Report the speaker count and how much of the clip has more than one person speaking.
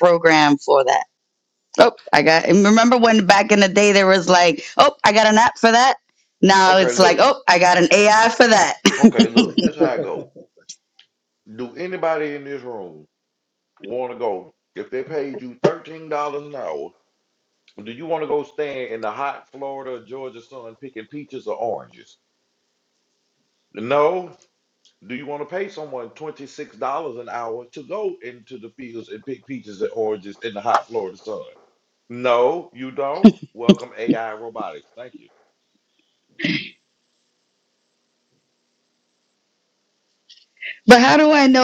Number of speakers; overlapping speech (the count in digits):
2, about 1%